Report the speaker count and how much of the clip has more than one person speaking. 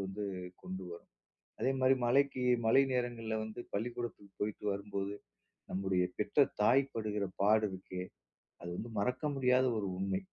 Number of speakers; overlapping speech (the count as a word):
one, no overlap